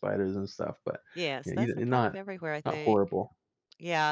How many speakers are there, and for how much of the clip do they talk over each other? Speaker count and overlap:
two, about 25%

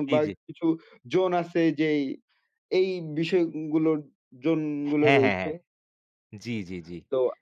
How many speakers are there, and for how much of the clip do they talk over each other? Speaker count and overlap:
two, about 11%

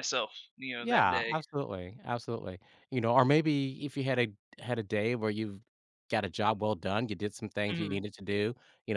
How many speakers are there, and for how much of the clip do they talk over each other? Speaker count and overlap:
two, about 10%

